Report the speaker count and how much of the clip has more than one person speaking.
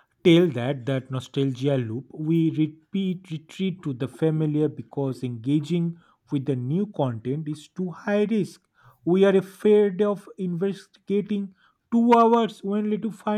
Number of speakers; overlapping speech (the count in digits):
1, no overlap